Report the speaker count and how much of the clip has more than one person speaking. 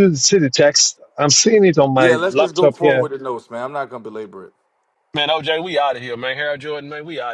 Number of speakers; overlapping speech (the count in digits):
3, about 15%